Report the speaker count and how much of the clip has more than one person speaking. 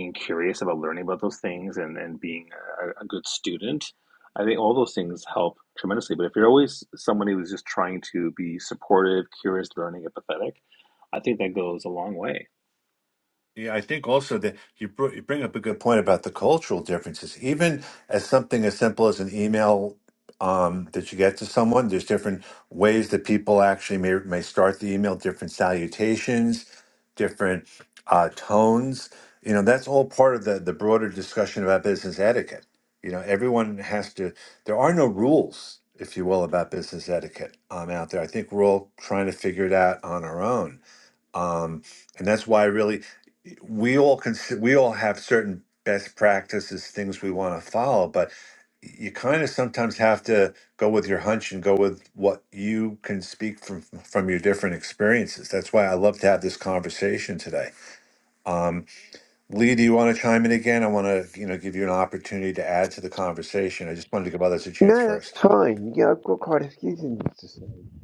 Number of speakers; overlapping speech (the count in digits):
3, about 1%